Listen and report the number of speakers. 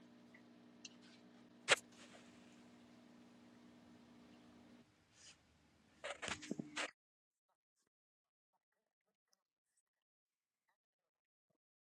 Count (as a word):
zero